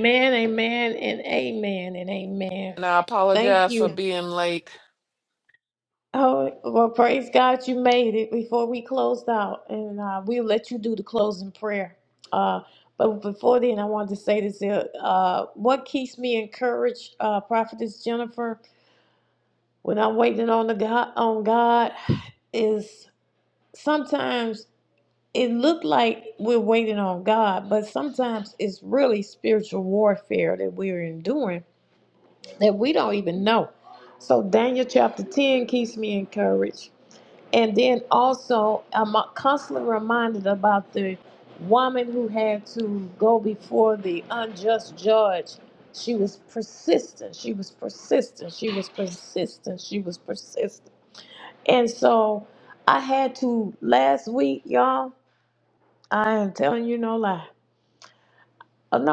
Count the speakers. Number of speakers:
2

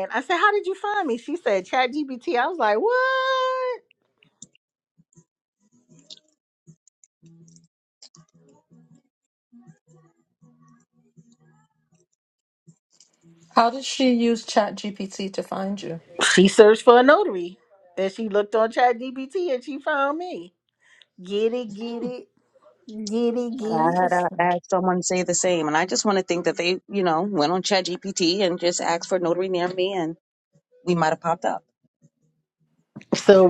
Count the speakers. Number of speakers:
3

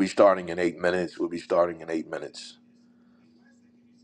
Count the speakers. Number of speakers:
1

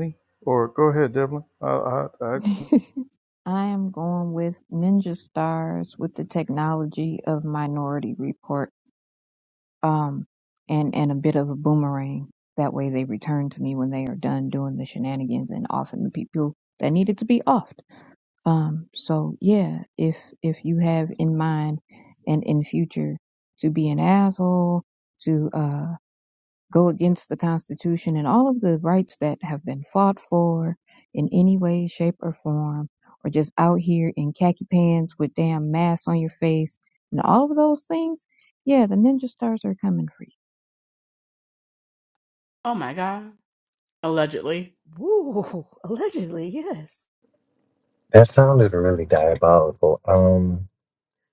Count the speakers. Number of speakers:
5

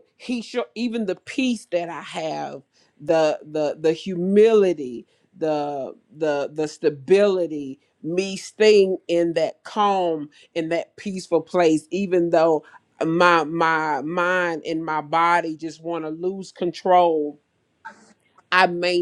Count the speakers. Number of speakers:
1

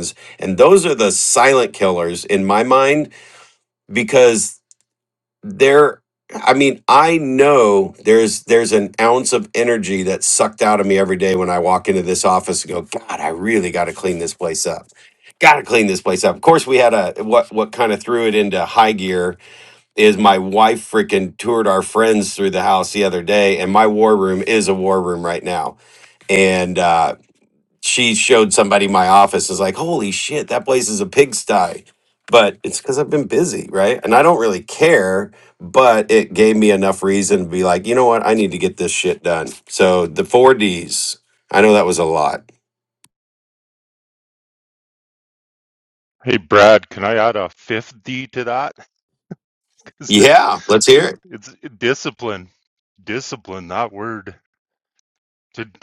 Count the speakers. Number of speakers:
2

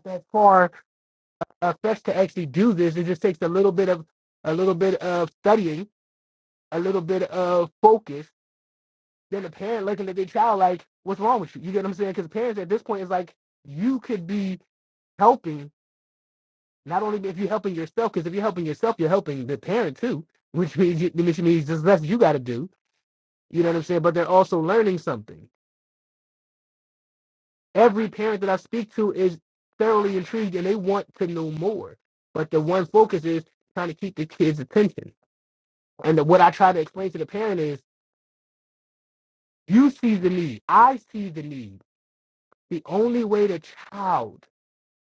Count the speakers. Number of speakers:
1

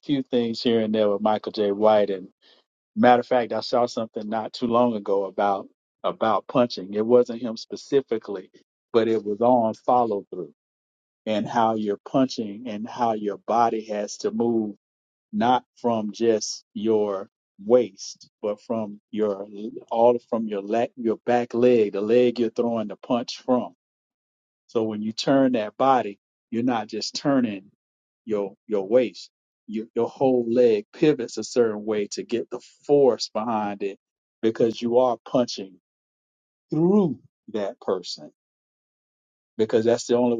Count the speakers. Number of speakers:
1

